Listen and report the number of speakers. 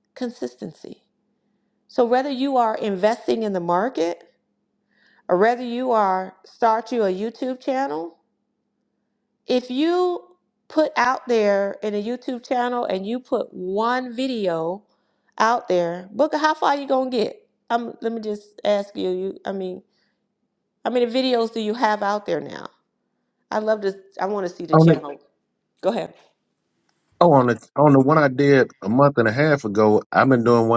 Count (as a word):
two